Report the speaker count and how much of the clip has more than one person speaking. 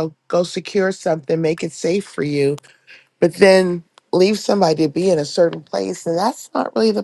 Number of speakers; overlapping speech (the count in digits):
1, no overlap